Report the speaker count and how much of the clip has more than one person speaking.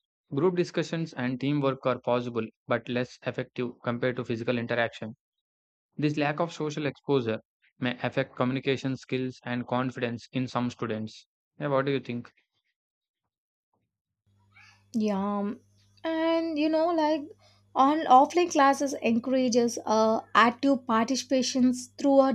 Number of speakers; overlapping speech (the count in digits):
2, no overlap